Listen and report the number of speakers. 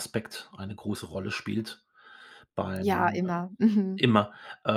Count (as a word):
two